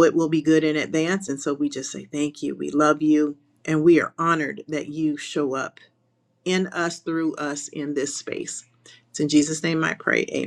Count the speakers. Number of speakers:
one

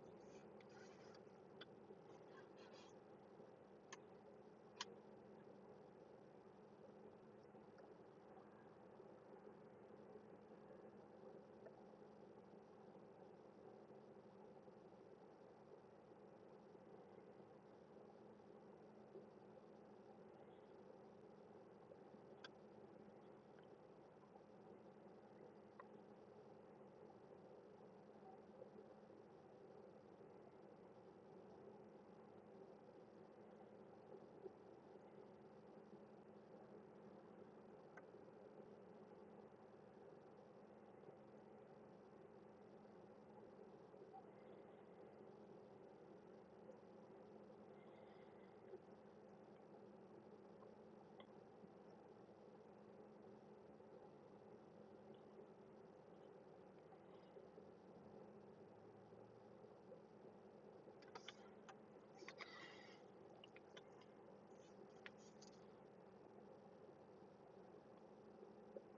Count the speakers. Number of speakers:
zero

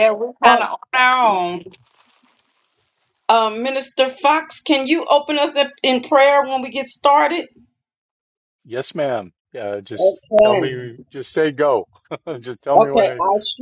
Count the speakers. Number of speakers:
three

